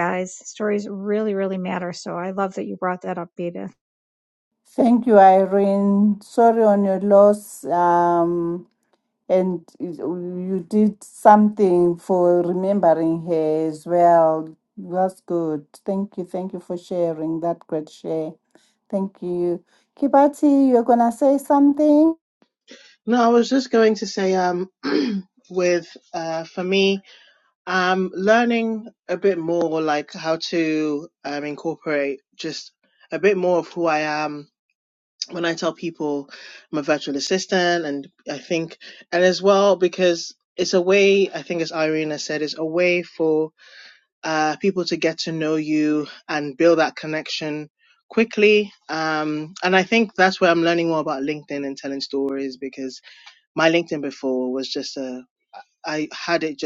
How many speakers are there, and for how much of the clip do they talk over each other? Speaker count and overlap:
three, no overlap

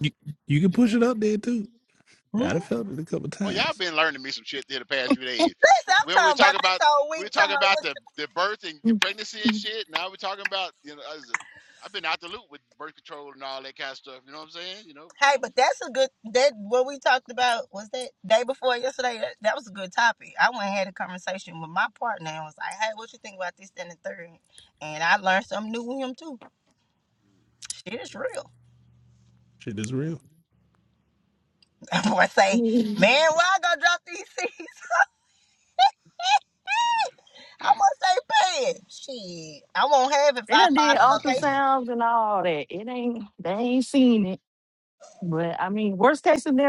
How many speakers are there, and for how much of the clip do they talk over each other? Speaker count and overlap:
four, about 8%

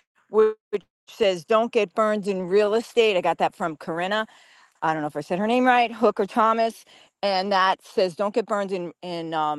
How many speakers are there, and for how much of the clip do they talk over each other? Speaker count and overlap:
one, no overlap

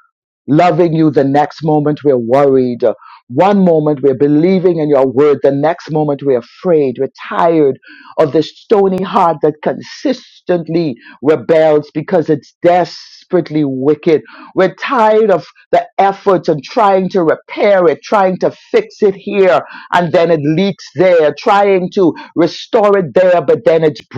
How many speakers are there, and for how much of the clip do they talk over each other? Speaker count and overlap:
one, no overlap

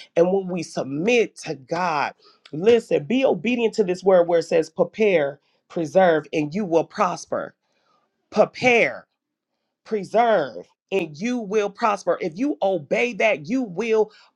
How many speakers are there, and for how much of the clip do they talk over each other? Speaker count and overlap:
one, no overlap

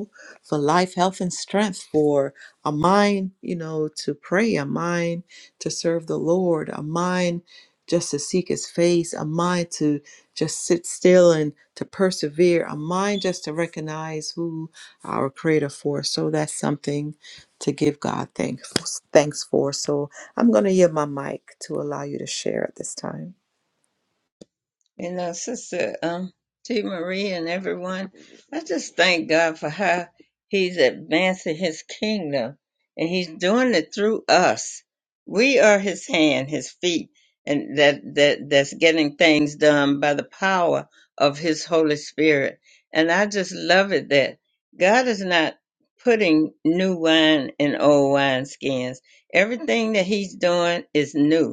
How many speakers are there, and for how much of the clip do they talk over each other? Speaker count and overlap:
two, no overlap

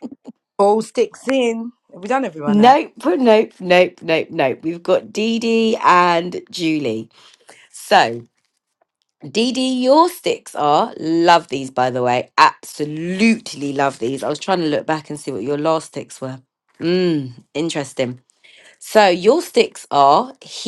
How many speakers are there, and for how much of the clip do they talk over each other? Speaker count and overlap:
two, about 1%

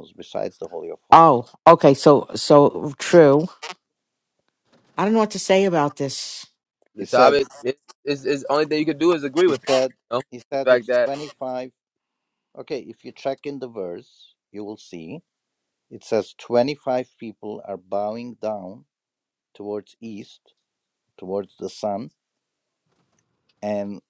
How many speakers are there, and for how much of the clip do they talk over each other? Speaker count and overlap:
three, about 7%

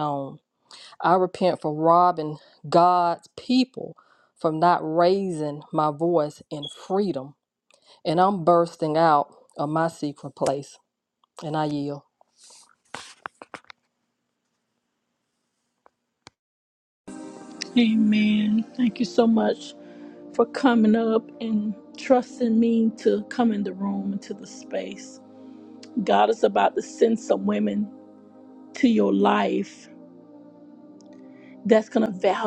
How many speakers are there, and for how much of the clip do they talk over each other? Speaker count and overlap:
two, no overlap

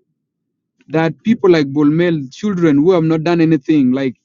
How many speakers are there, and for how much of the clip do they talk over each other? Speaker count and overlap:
one, no overlap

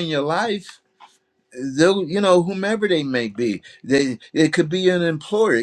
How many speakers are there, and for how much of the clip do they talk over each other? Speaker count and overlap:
one, no overlap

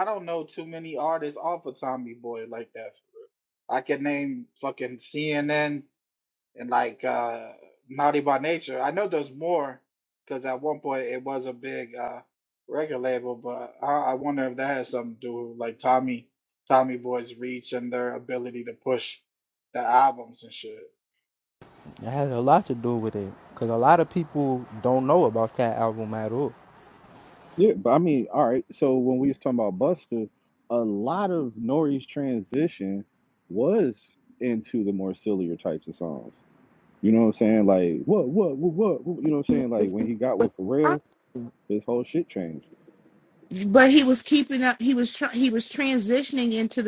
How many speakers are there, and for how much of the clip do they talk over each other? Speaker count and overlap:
four, under 1%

